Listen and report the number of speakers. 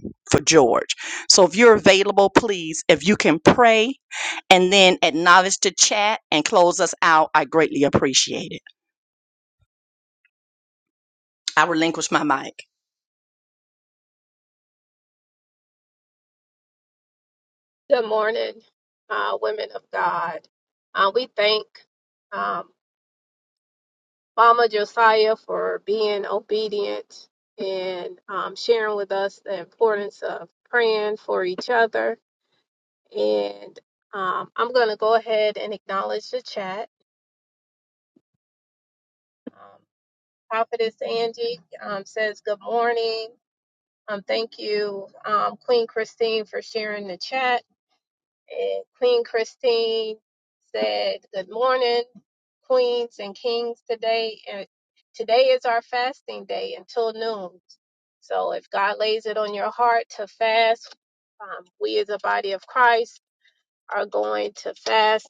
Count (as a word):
two